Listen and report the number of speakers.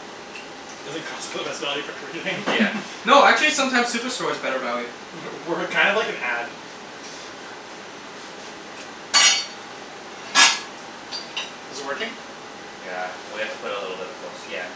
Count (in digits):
3